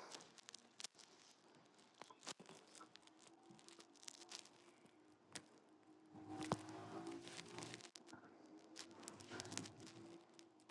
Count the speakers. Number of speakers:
zero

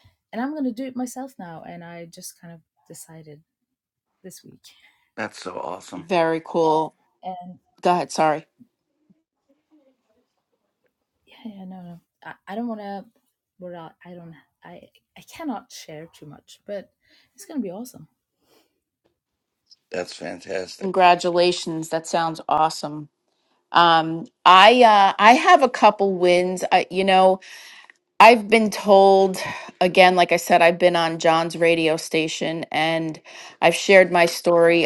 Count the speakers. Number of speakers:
three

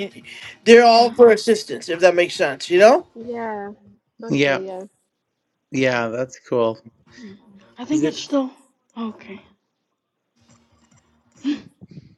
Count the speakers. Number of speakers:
four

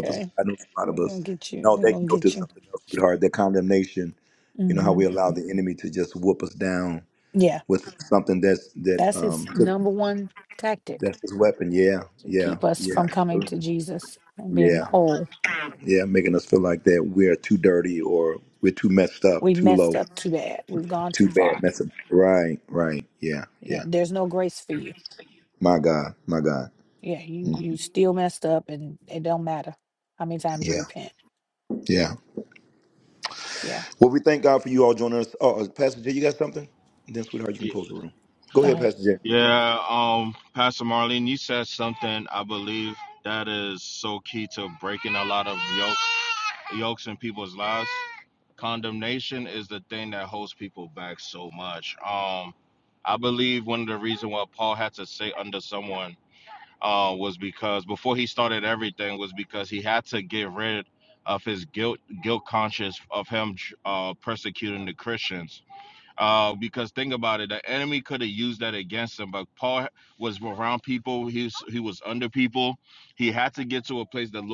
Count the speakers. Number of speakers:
three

